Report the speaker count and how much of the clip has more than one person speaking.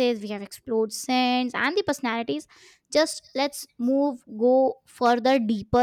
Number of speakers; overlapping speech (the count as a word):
one, no overlap